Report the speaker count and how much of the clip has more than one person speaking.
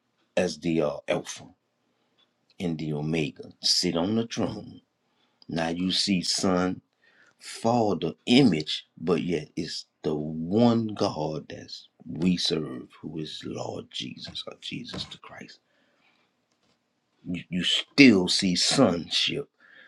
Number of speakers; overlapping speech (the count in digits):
1, no overlap